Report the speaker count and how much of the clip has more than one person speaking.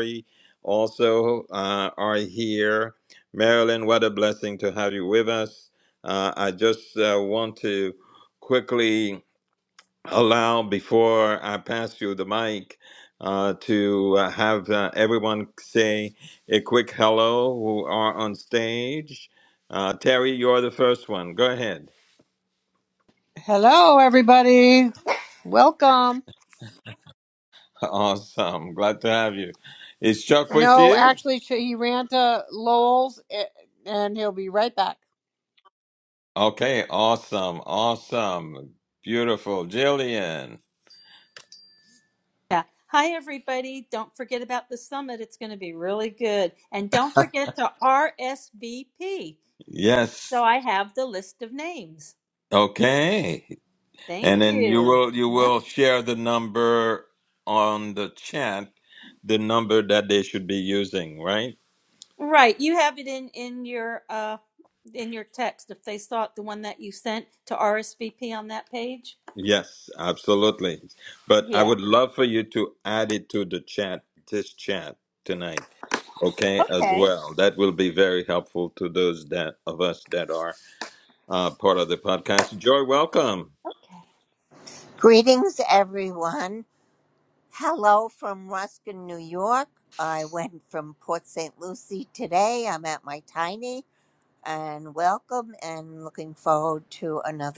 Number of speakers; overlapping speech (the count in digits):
4, about 3%